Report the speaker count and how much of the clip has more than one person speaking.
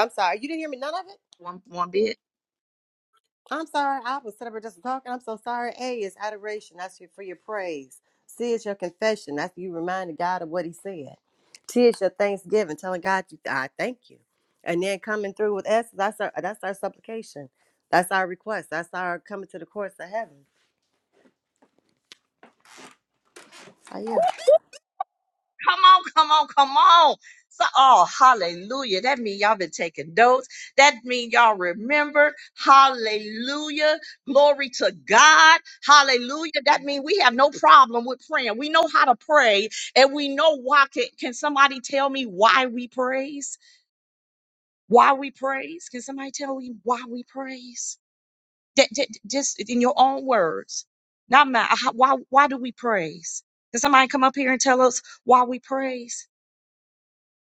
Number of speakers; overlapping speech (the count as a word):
two, no overlap